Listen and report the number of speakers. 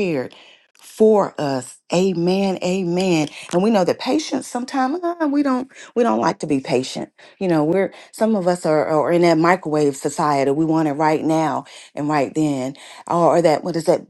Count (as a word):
one